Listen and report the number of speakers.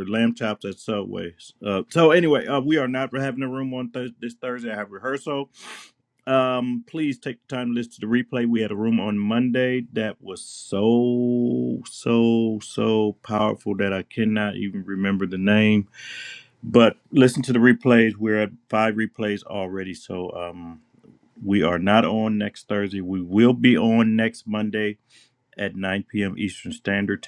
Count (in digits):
1